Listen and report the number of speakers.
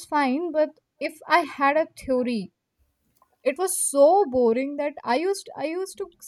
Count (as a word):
one